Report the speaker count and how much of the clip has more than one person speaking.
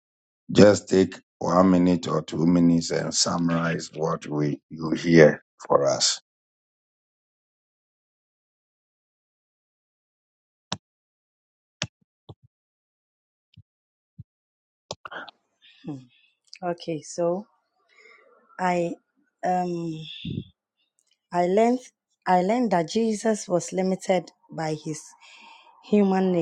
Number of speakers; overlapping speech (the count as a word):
two, no overlap